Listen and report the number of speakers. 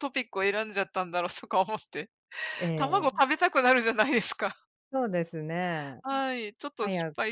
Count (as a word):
two